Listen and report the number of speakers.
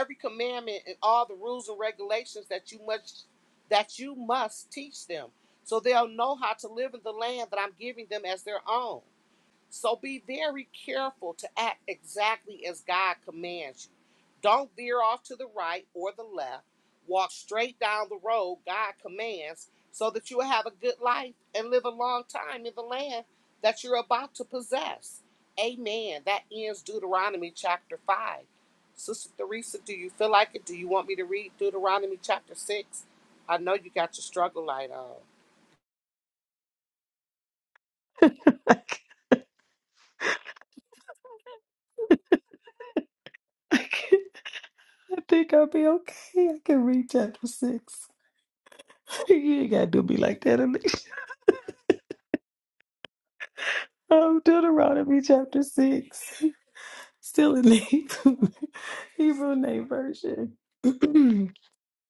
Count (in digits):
2